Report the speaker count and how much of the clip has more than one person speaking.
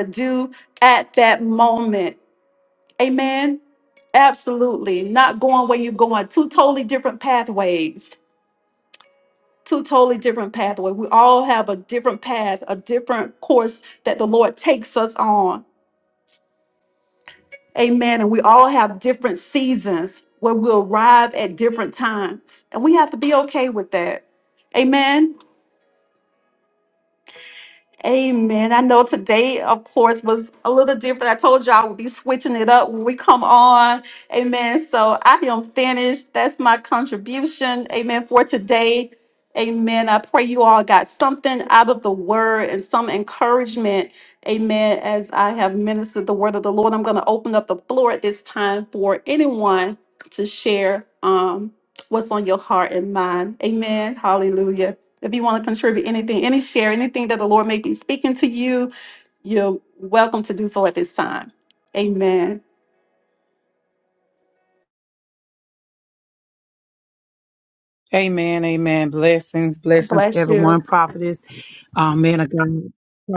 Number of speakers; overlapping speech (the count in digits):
2, about 1%